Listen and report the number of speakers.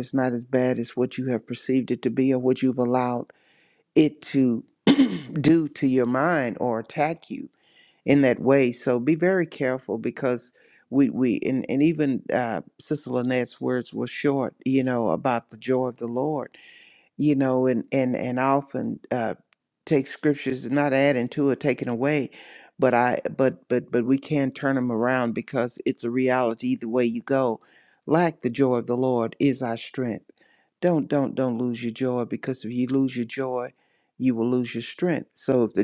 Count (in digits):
1